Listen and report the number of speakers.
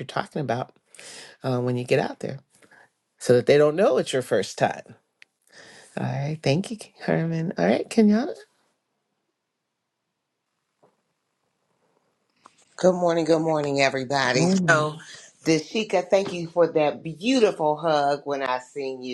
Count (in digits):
2